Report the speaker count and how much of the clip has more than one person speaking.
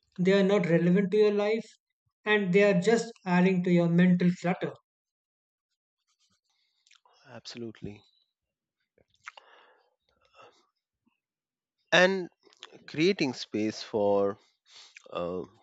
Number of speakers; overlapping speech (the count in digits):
2, no overlap